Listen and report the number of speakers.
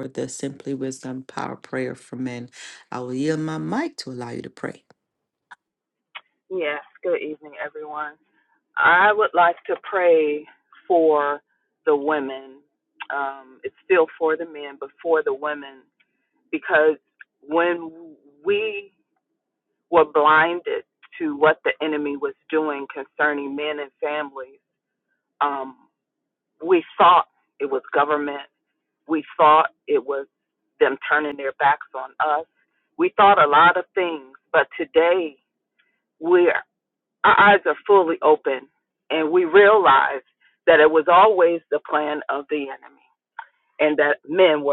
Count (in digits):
2